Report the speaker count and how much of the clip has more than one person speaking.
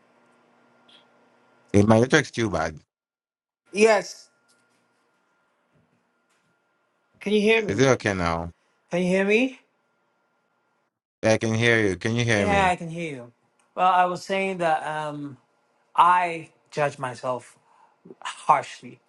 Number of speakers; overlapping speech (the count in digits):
2, about 3%